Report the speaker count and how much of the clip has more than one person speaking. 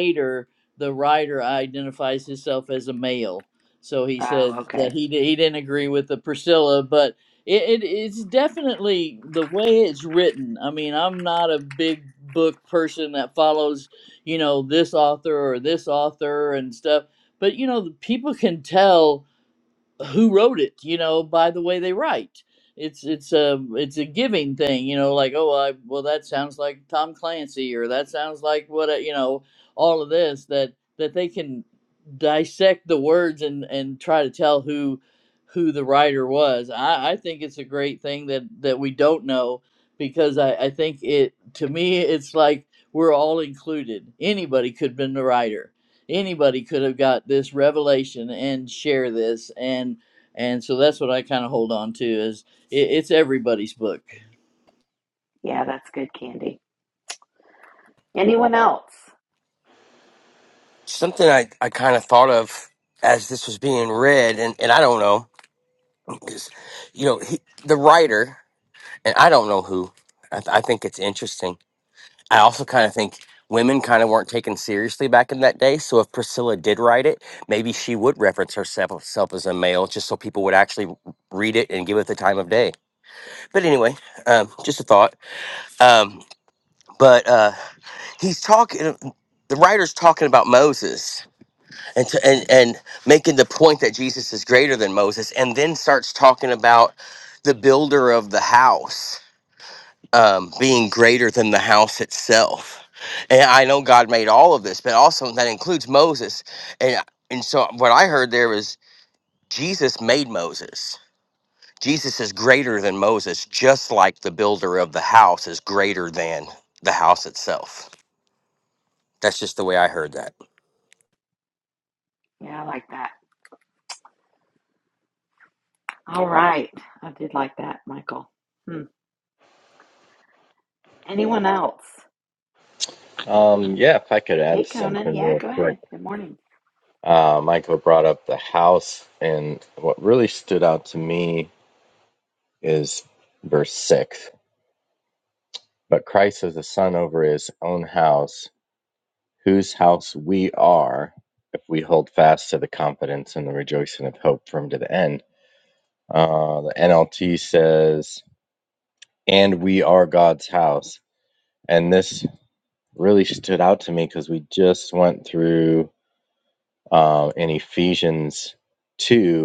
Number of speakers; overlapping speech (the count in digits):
4, about 1%